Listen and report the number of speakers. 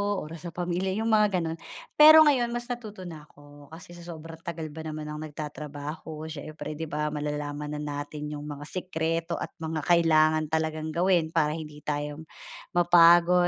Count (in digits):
1